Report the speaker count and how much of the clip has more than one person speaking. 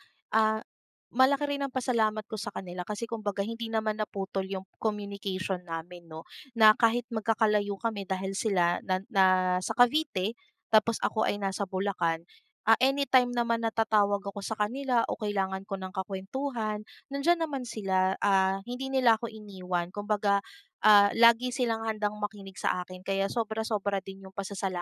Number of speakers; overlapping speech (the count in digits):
1, no overlap